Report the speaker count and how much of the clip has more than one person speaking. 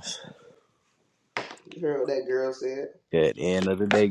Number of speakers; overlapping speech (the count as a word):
two, no overlap